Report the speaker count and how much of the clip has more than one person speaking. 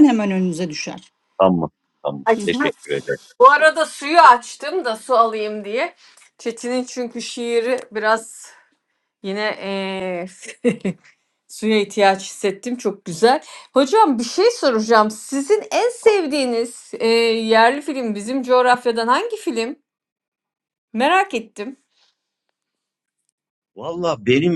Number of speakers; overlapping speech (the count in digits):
3, about 2%